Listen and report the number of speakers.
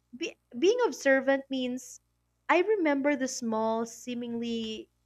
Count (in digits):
1